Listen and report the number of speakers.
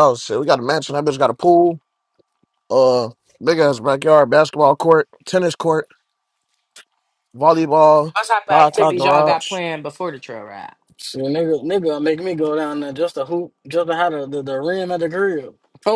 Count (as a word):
three